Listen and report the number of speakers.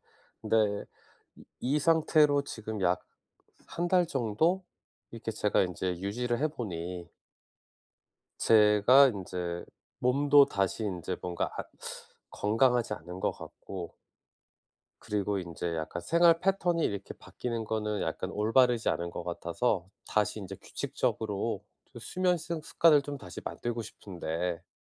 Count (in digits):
1